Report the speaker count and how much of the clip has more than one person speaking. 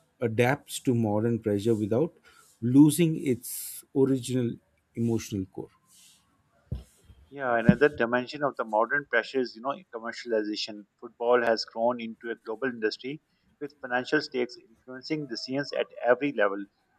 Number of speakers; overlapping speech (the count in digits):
2, no overlap